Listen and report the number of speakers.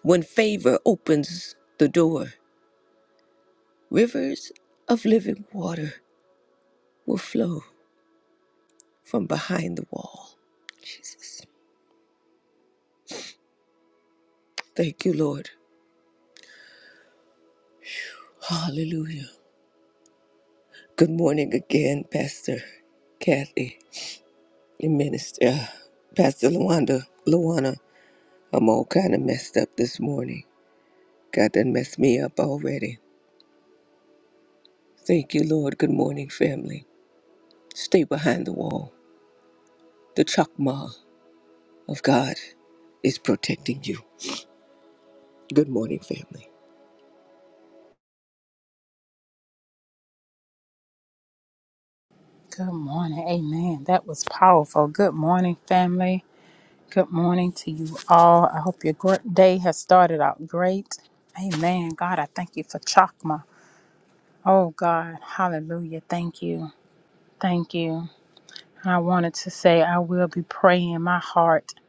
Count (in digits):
2